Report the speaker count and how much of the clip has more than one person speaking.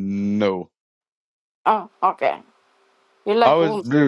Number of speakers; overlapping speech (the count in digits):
2, about 10%